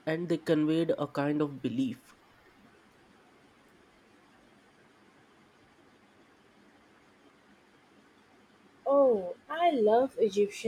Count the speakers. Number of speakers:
2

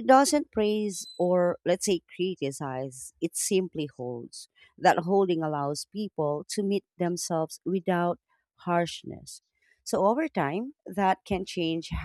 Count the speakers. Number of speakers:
1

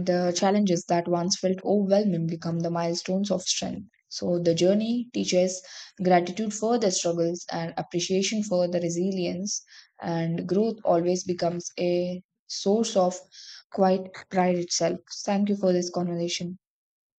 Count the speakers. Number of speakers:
1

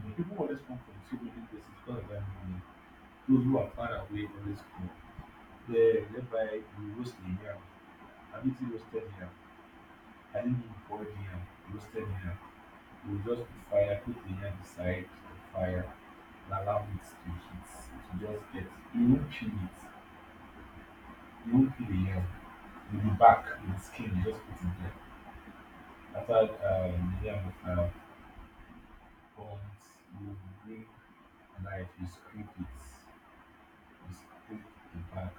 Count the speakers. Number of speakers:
1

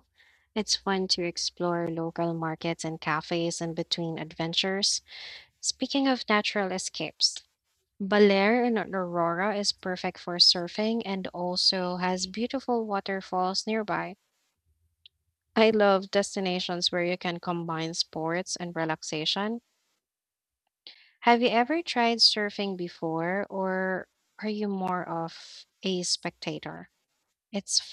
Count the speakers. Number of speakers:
1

